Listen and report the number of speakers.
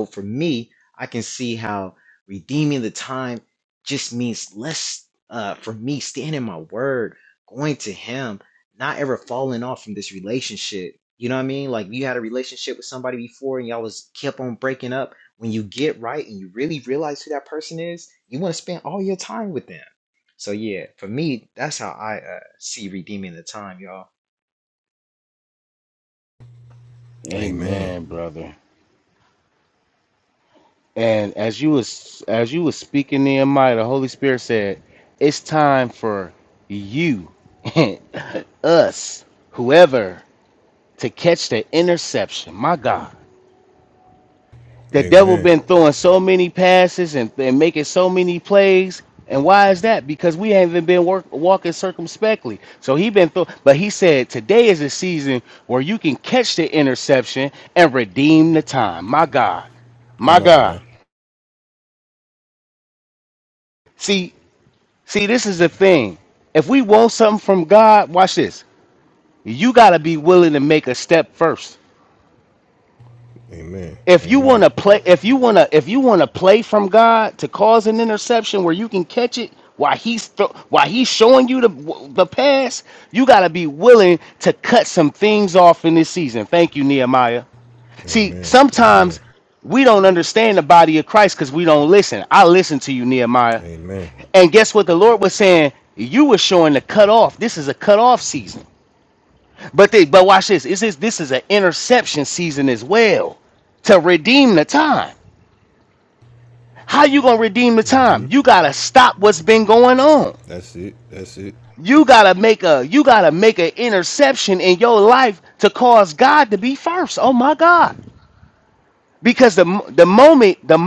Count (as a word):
three